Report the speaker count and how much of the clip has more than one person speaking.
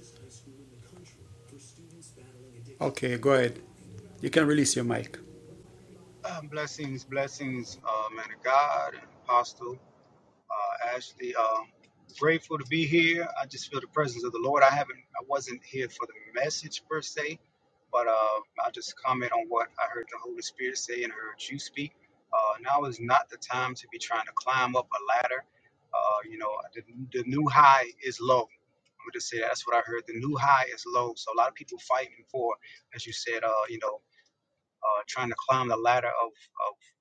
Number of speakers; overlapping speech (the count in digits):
2, no overlap